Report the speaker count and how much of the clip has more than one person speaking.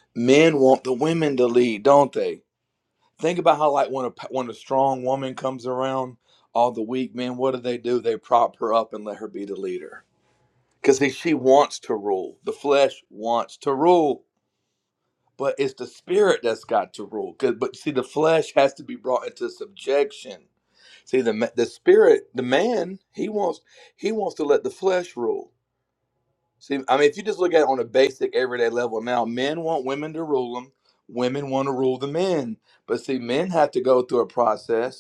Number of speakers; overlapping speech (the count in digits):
1, no overlap